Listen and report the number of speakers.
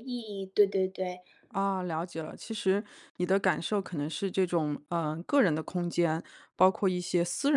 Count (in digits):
2